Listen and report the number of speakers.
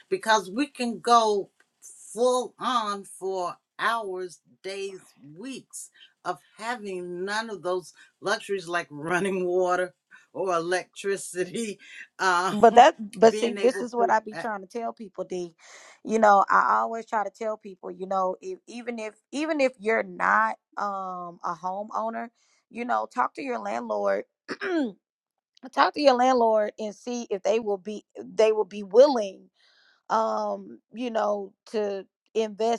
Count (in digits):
2